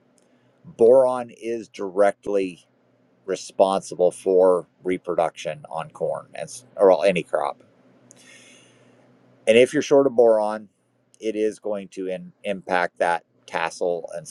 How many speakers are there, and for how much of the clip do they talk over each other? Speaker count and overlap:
one, no overlap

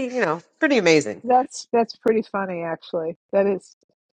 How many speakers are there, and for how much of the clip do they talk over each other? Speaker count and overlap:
two, no overlap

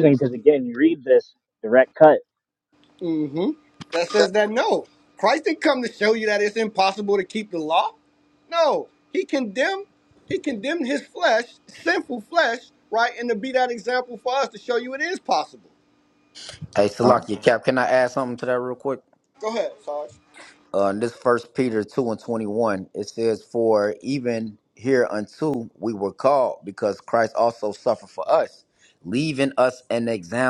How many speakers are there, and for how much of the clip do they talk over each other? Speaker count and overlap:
three, about 1%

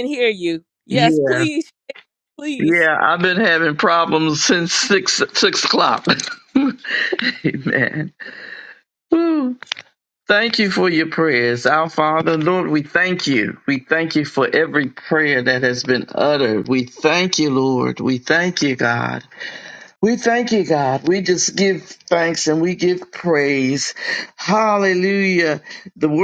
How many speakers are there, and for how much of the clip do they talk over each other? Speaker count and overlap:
two, about 3%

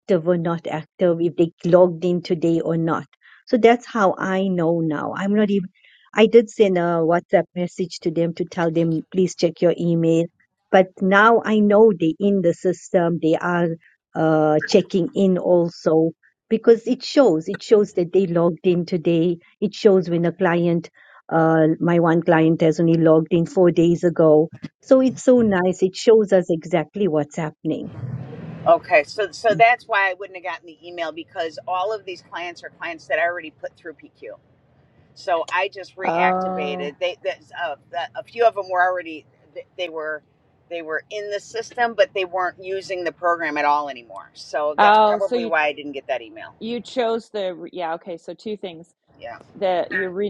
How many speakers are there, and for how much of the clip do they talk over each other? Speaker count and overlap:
three, about 3%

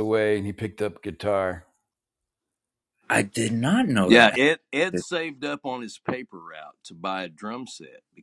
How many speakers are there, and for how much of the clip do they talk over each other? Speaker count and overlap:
three, about 4%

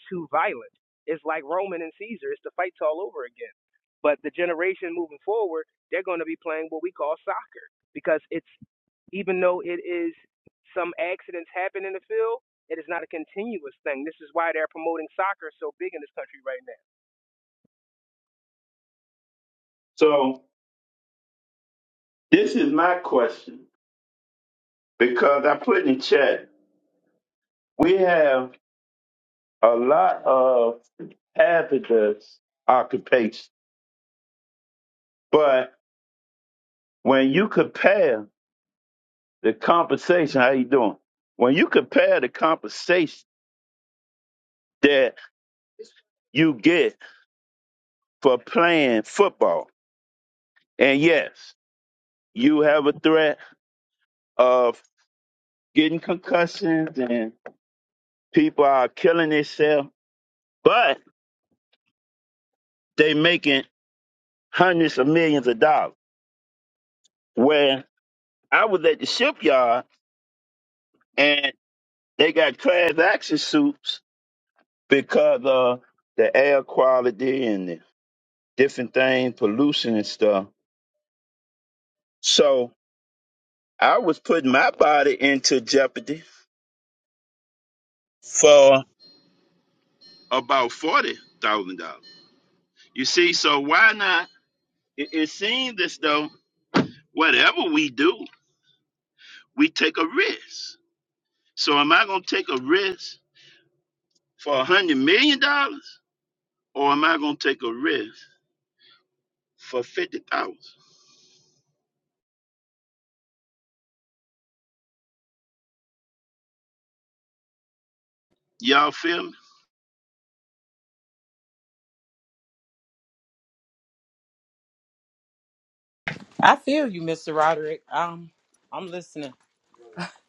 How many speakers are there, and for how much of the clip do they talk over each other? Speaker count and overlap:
three, no overlap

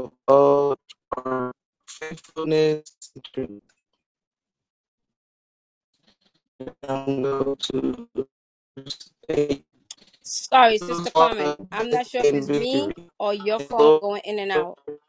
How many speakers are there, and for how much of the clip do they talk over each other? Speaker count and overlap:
two, about 8%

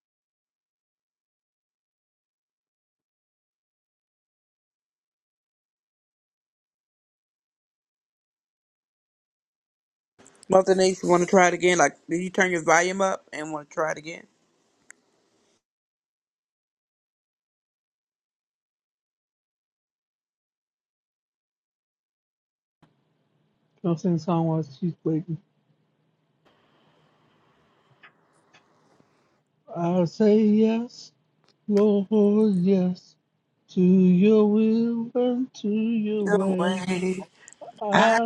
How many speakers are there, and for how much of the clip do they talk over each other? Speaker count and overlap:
three, about 2%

